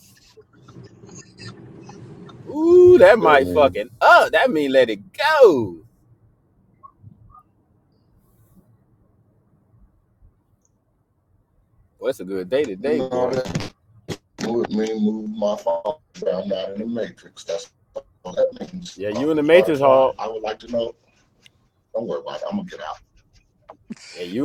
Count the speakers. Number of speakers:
two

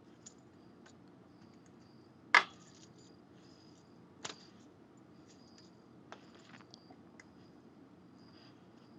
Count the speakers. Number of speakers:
zero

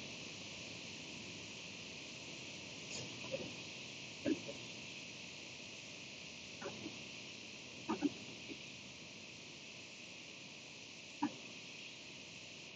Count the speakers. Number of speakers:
zero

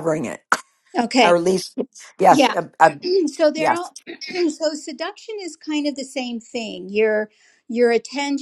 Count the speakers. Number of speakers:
two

